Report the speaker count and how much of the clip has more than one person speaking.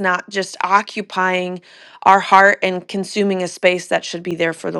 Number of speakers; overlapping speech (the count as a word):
one, no overlap